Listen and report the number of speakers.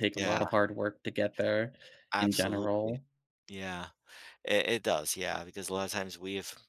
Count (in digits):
2